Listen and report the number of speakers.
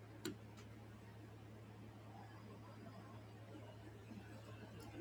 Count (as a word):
zero